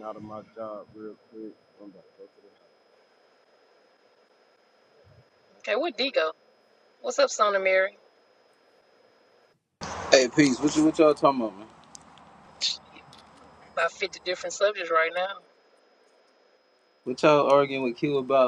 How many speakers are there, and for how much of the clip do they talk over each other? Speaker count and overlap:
3, no overlap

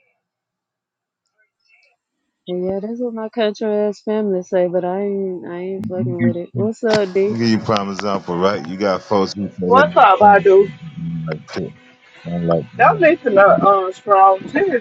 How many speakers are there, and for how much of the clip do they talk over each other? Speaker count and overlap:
3, about 7%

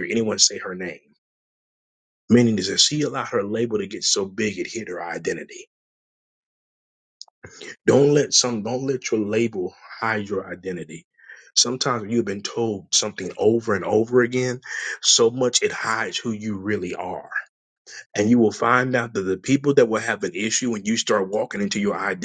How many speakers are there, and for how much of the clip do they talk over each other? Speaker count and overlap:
1, no overlap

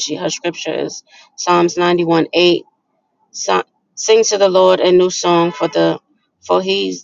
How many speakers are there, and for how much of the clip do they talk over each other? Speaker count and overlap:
1, no overlap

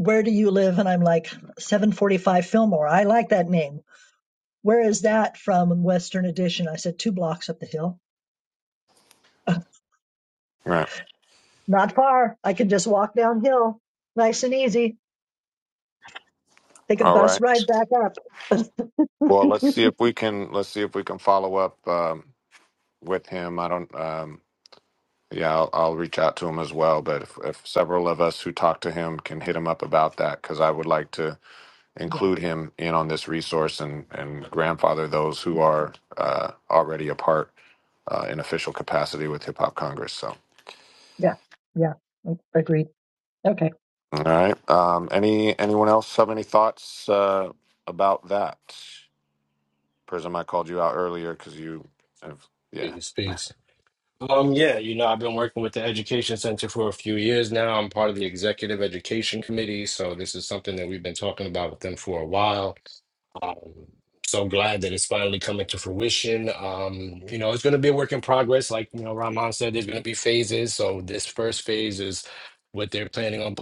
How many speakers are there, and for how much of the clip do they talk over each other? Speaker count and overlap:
3, about 1%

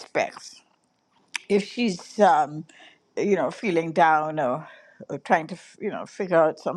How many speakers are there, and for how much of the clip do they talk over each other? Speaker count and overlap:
1, no overlap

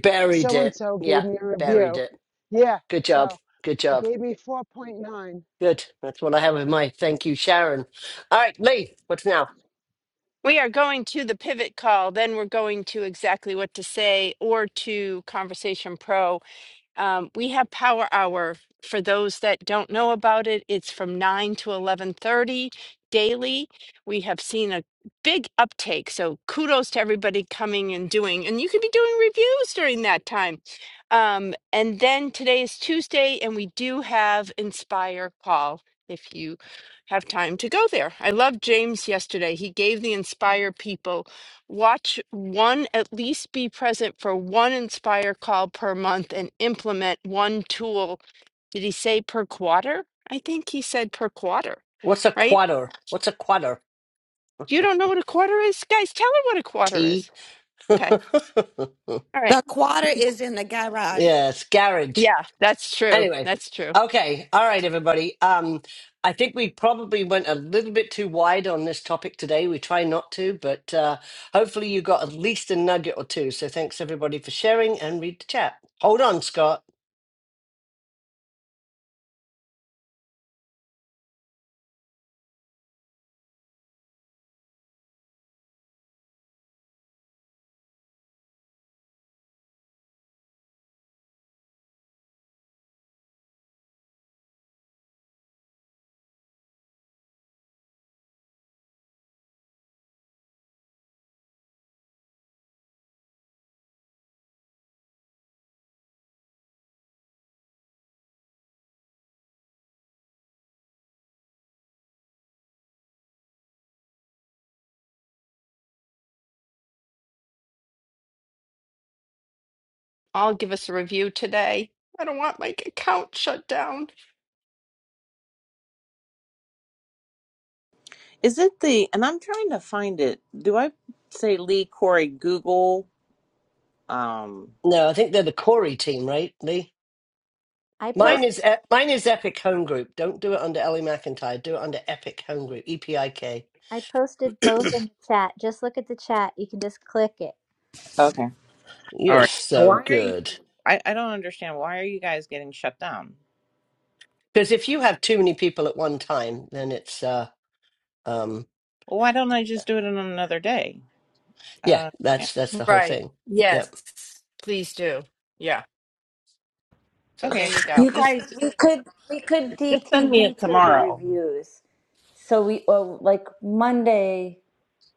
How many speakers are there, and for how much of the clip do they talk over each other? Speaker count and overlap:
7, about 4%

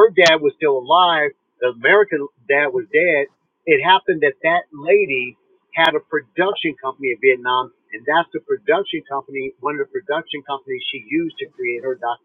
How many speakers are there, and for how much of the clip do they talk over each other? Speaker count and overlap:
1, no overlap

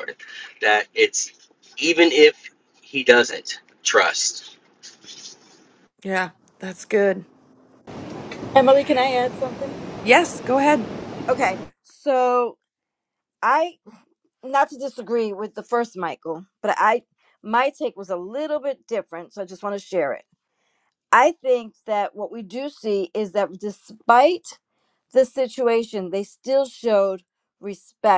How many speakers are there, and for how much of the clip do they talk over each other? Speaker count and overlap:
3, no overlap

